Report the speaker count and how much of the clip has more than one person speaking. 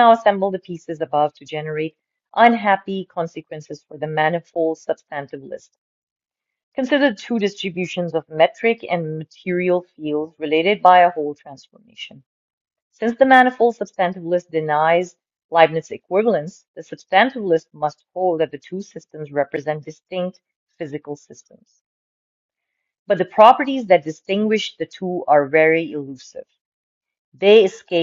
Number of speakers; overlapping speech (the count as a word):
one, no overlap